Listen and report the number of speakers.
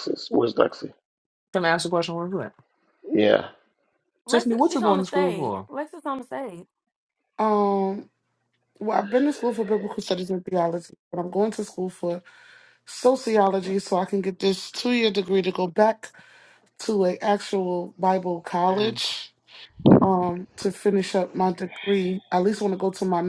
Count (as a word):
four